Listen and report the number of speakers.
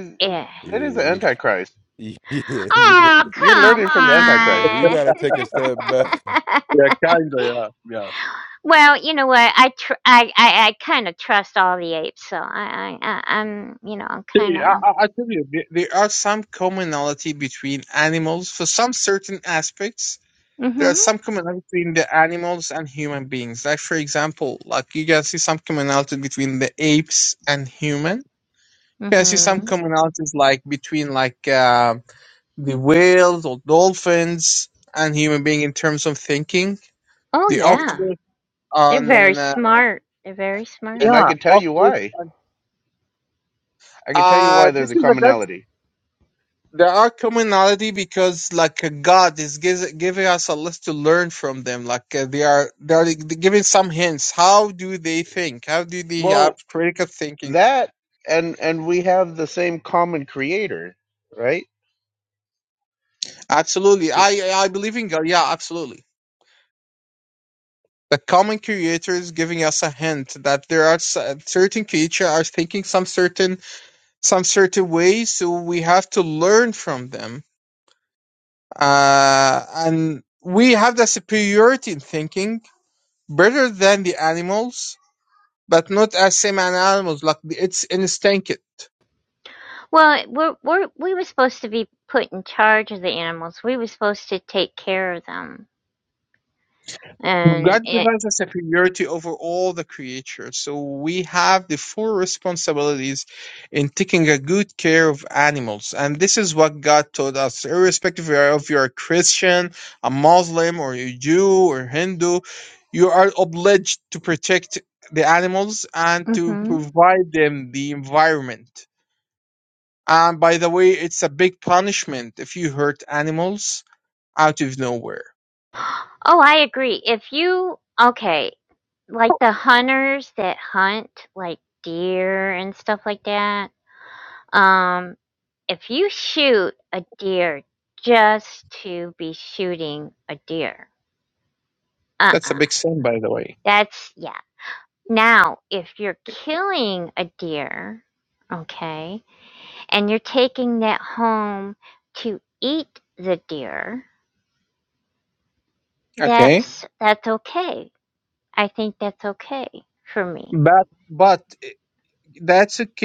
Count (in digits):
4